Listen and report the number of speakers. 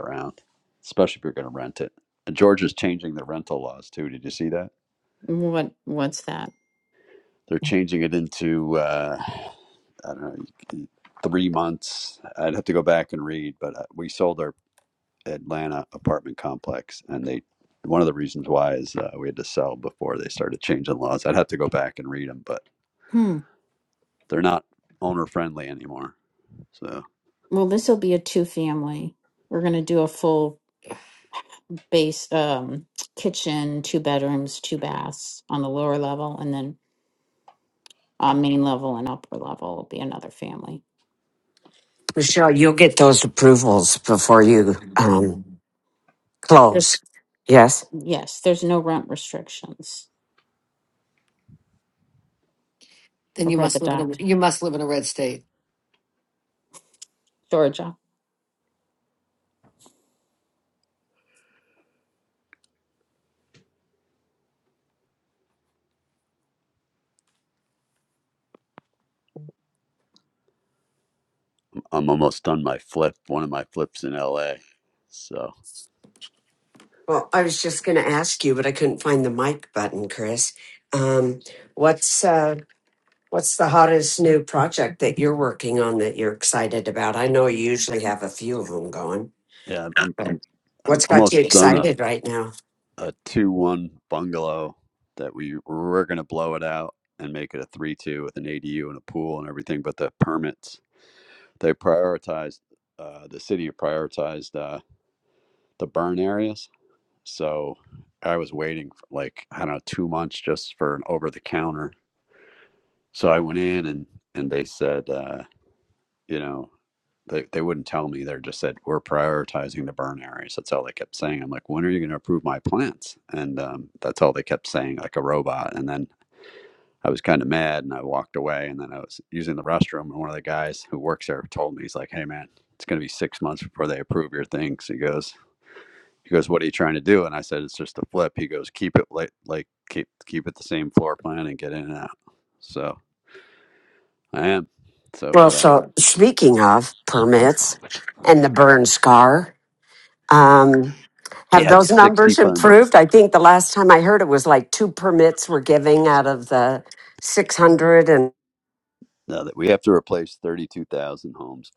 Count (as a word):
four